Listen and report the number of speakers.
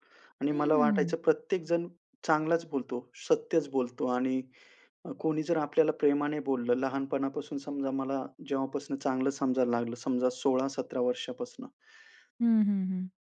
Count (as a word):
two